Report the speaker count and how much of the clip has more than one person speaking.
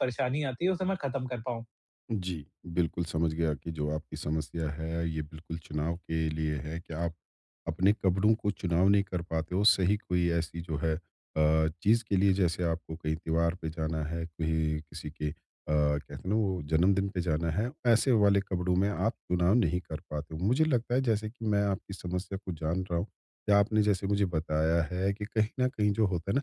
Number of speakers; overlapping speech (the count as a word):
two, no overlap